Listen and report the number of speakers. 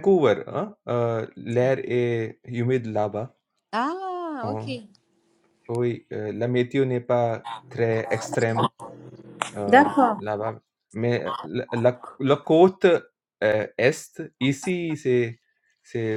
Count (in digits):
2